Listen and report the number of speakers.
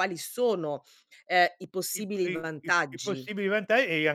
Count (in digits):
2